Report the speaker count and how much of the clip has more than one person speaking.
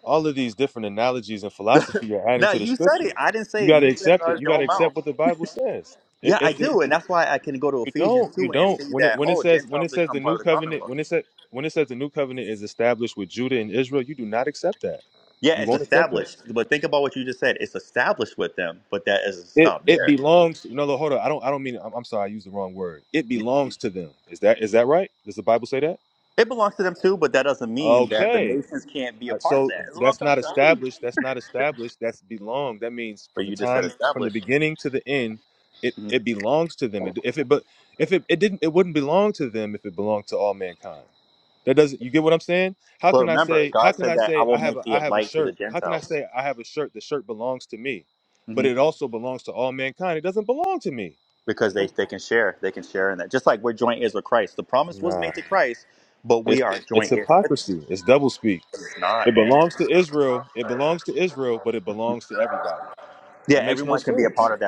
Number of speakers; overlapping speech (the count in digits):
2, about 24%